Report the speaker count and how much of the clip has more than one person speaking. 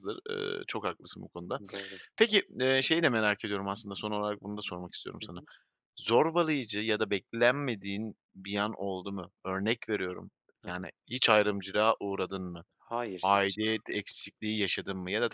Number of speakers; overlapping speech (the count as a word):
two, about 5%